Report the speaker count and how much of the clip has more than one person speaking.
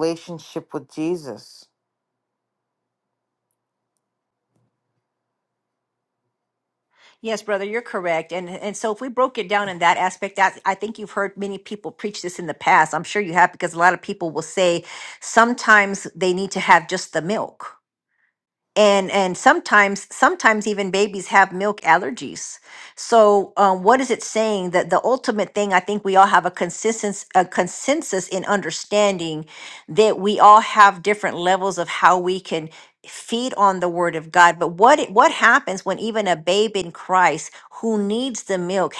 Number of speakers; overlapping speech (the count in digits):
2, no overlap